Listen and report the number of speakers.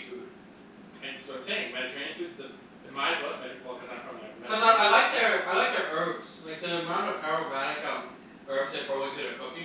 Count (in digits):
2